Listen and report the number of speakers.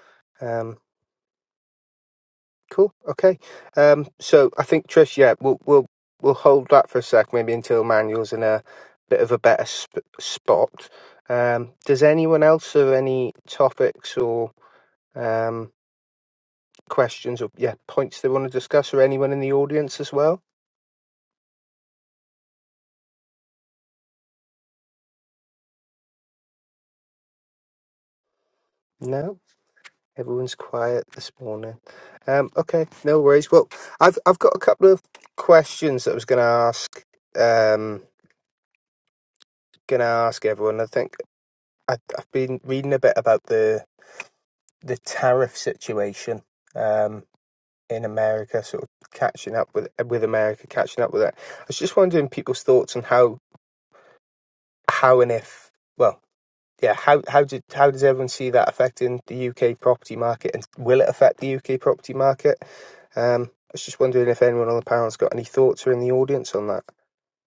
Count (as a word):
one